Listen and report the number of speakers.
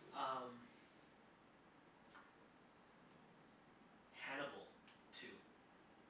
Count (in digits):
1